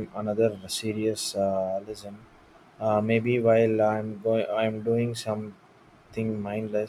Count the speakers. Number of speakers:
1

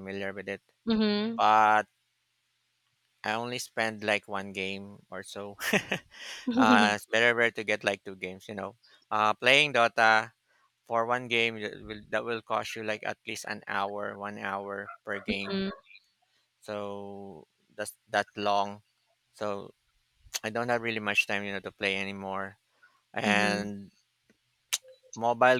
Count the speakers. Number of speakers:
2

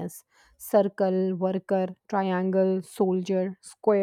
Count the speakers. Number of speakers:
1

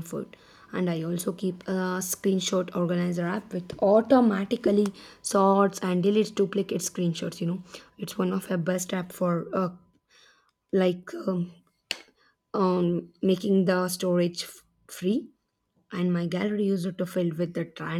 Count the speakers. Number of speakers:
1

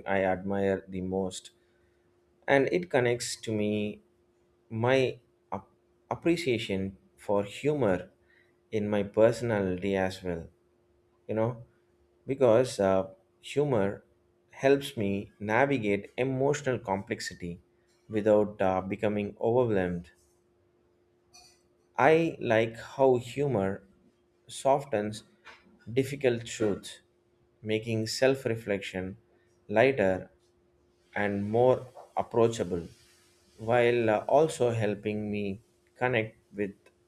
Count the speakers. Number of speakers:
1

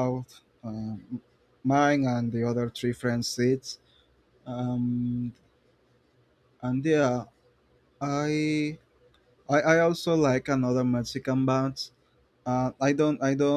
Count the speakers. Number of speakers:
1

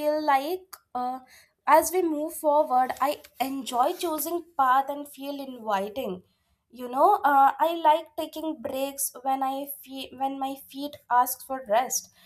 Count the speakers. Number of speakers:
1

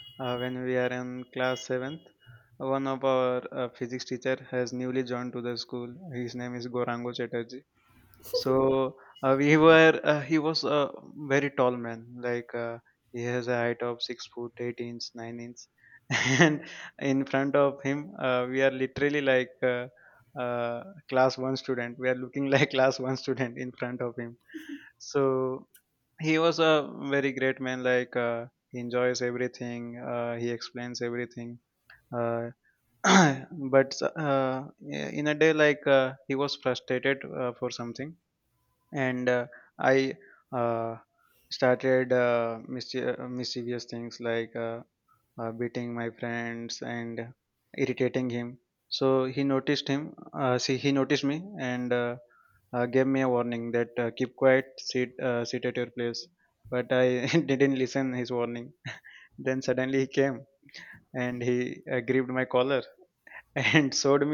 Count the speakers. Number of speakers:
1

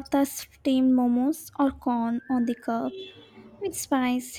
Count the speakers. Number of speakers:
1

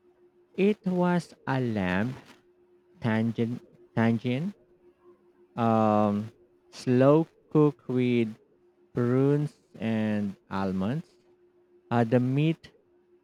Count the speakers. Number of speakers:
1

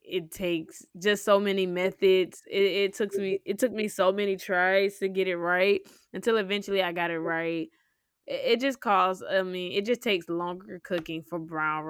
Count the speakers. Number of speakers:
1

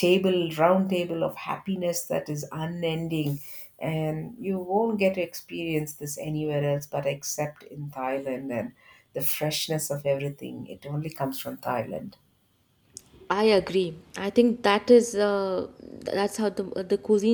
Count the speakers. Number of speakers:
2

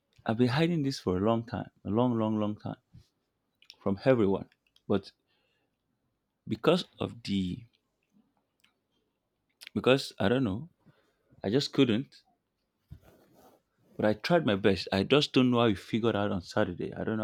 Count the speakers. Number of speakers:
1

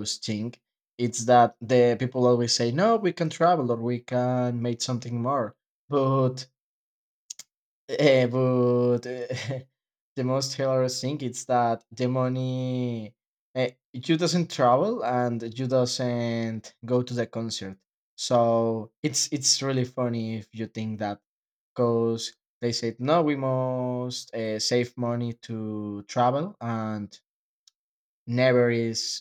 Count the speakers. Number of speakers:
1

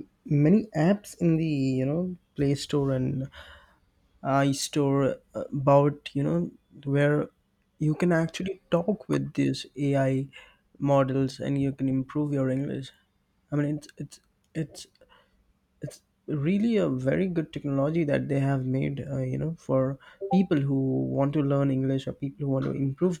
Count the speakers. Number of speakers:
1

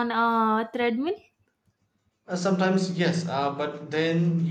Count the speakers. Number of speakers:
2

